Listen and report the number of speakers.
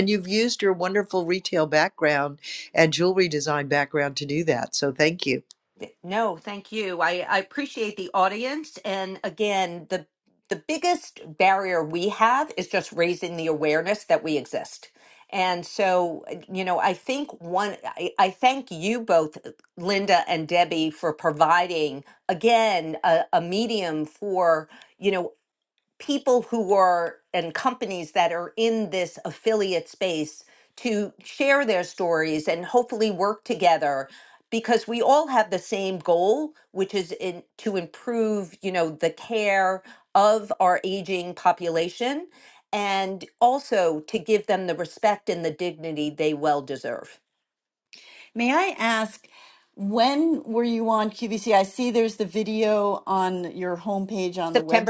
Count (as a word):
three